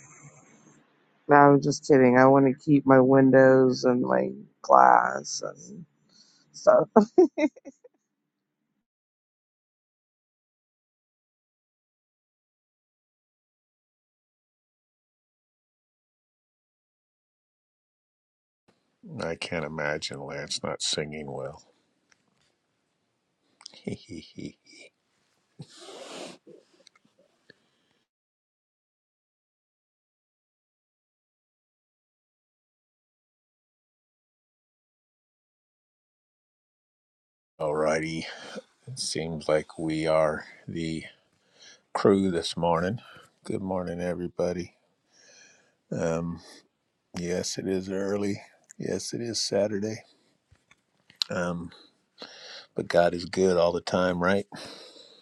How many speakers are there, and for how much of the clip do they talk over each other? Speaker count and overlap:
two, no overlap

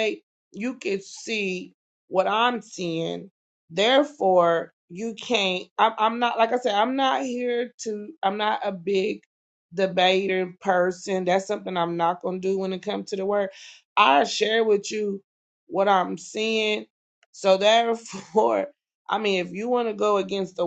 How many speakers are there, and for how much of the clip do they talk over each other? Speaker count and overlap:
one, no overlap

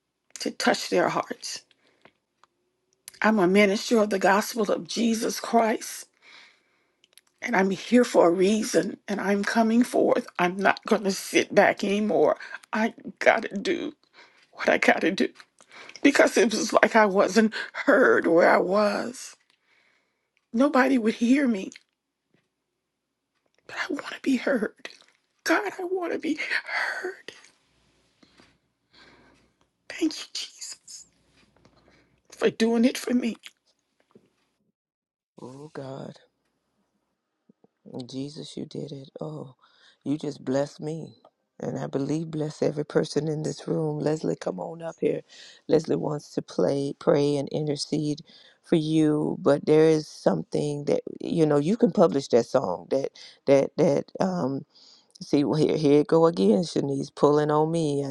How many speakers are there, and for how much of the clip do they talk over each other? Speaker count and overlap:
two, no overlap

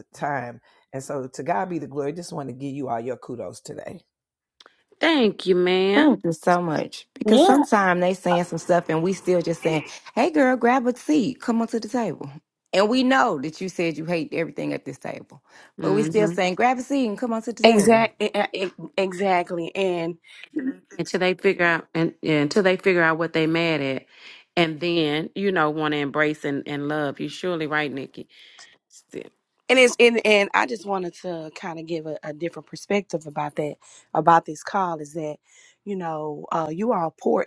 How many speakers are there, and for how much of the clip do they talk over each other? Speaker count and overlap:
four, about 3%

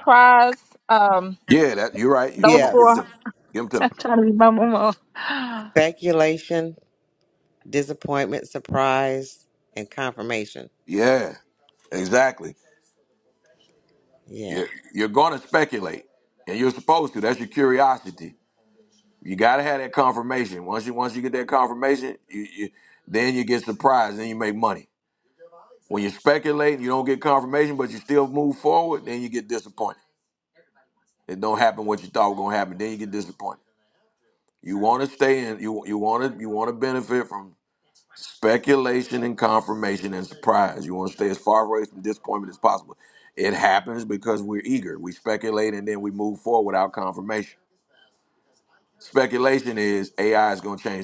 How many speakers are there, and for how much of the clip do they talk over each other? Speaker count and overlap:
three, about 2%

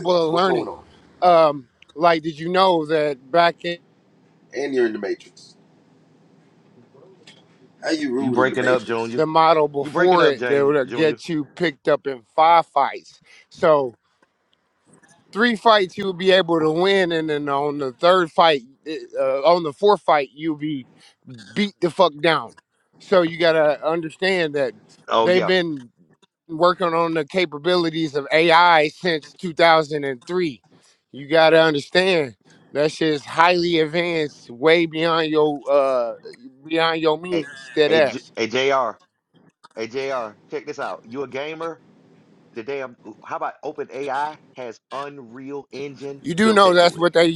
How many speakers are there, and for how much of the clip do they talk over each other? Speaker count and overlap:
three, about 9%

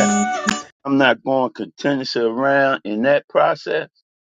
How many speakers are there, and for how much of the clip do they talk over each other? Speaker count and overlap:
one, no overlap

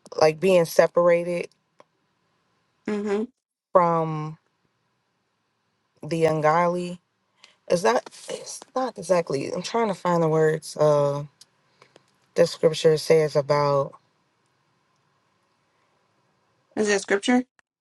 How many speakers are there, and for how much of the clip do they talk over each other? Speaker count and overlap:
two, no overlap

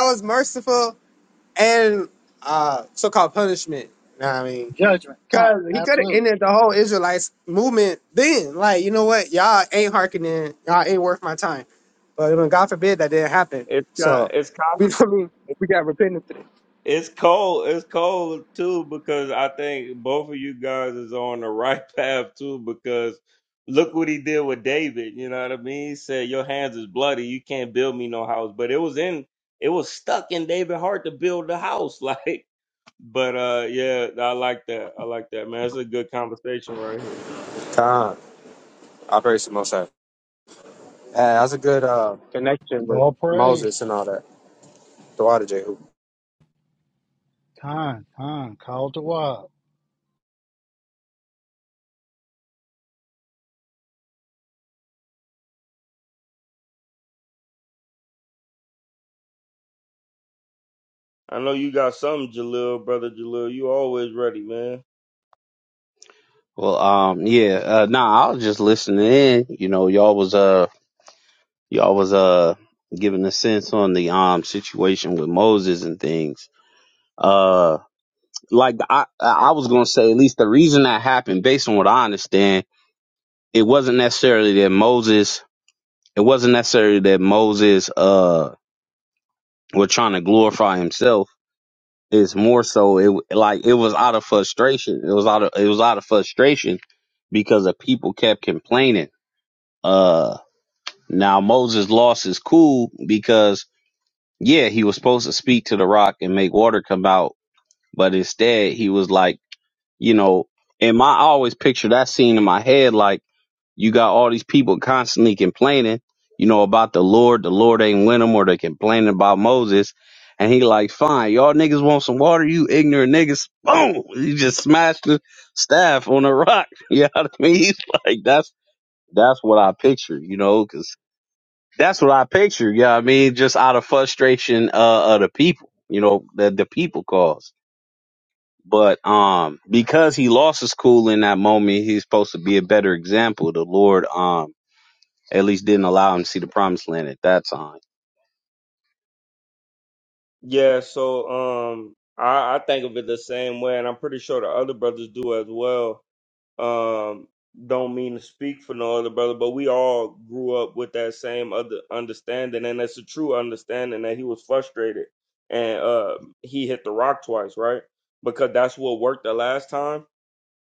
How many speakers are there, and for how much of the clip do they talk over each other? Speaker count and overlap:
four, about 1%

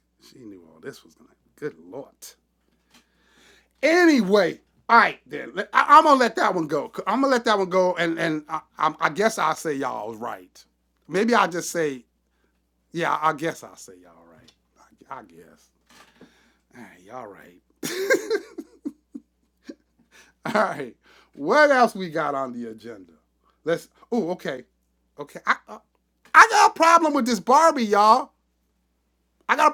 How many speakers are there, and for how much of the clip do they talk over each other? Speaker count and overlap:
one, no overlap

